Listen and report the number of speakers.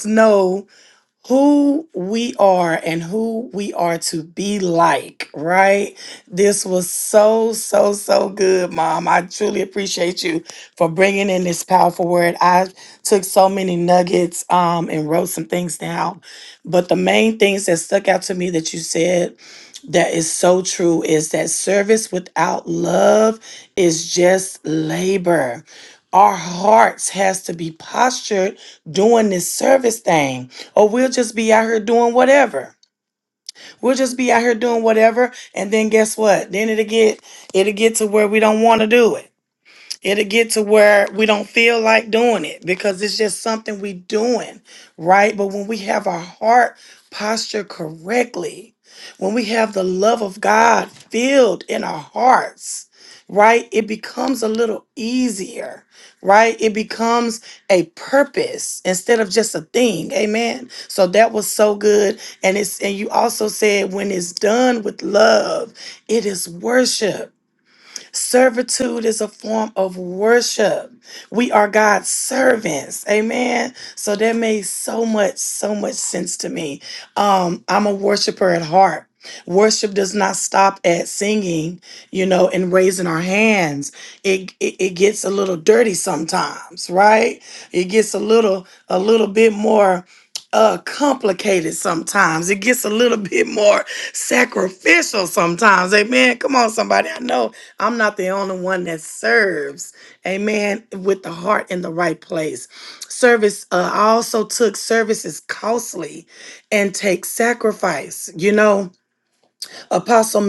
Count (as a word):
one